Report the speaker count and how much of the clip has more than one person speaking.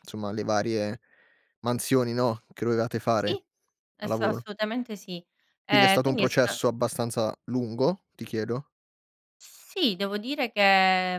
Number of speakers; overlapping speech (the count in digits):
2, about 12%